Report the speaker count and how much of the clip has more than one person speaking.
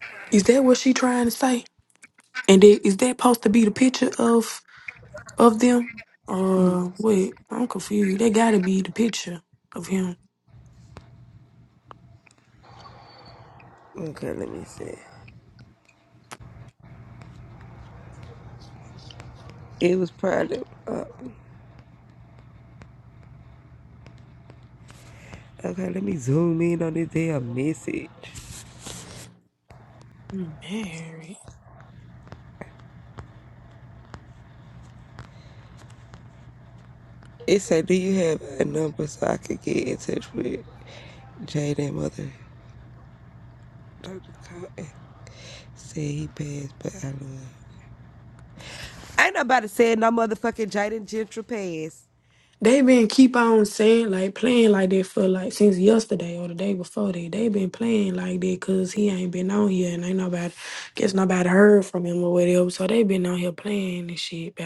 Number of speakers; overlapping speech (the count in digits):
2, about 1%